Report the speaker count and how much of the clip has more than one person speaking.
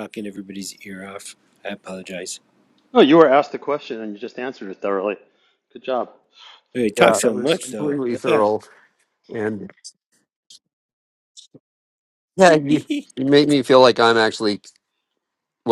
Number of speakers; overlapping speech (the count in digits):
3, about 10%